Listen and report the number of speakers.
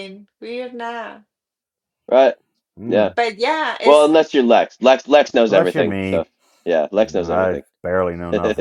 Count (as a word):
three